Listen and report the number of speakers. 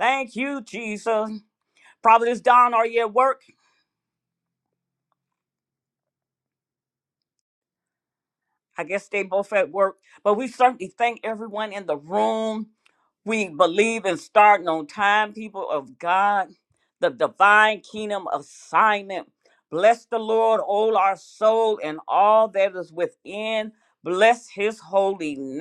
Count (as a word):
one